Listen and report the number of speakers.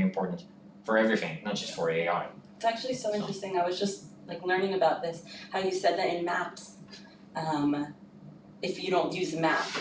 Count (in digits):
2